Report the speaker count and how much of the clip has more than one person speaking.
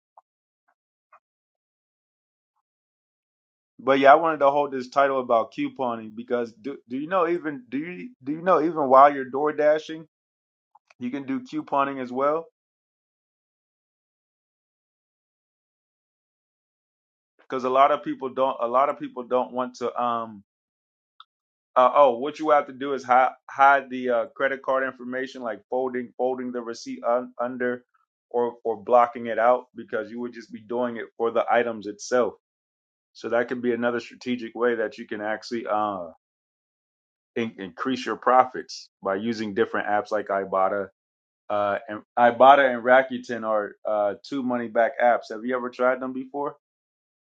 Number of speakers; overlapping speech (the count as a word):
one, no overlap